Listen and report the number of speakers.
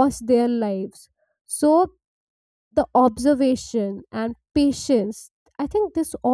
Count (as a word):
one